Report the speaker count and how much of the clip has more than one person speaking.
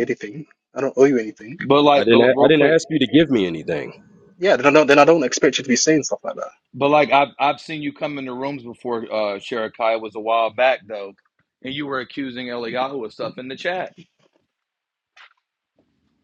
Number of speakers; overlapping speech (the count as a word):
three, about 6%